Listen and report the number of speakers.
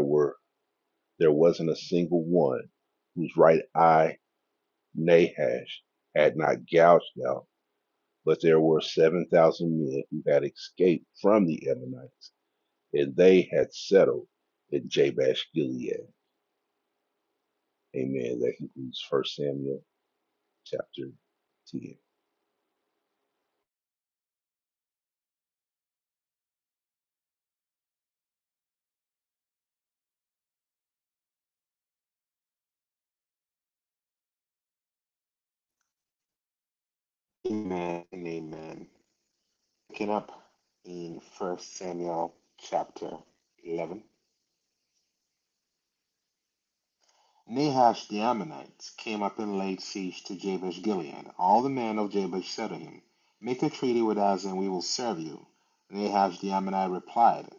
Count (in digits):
2